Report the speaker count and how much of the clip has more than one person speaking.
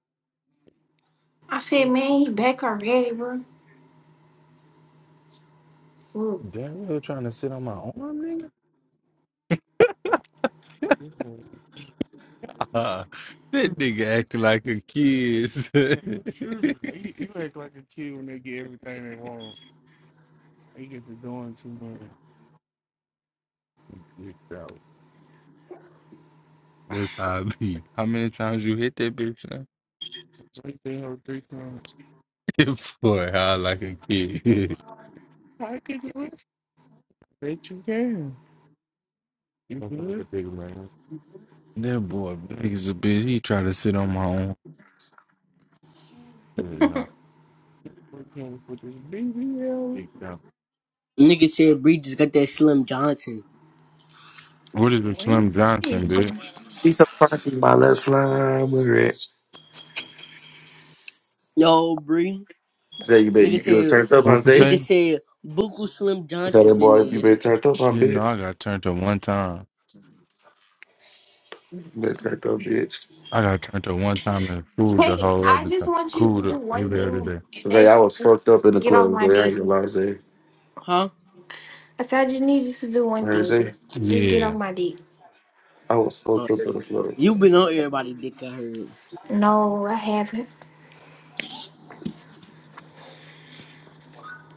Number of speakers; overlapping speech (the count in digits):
4, about 9%